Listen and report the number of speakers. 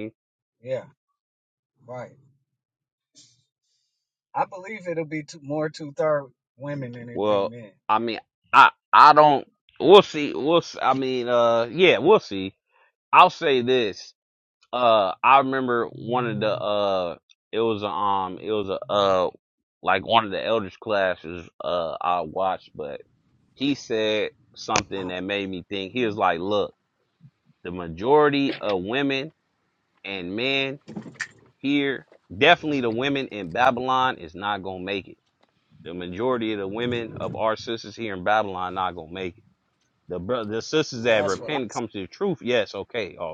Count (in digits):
2